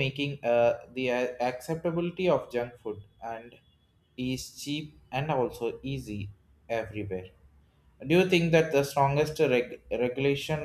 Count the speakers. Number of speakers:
one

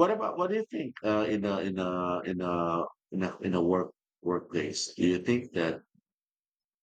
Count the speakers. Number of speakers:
one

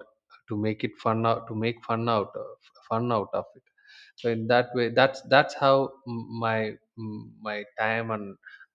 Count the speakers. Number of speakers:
one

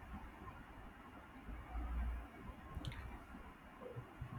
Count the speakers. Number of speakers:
zero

